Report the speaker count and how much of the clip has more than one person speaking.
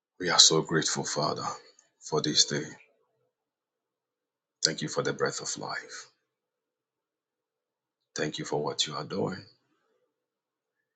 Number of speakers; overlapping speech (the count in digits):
1, no overlap